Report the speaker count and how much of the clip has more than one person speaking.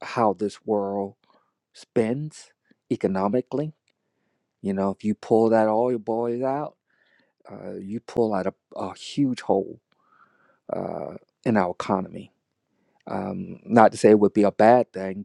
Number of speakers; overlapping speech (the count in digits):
1, no overlap